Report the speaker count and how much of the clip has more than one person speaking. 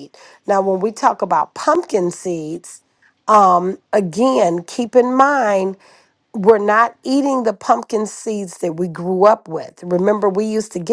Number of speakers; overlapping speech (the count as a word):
one, no overlap